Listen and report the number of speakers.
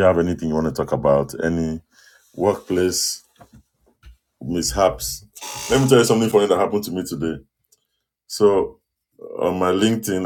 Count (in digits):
1